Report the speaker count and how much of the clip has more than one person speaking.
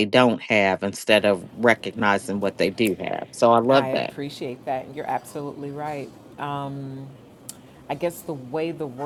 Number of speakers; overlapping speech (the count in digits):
2, about 5%